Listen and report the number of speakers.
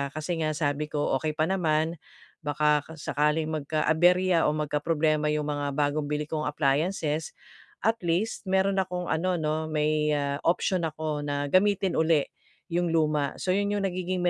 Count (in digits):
1